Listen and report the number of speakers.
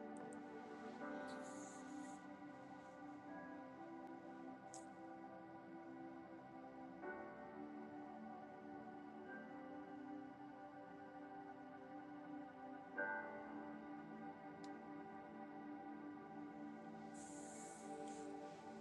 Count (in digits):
0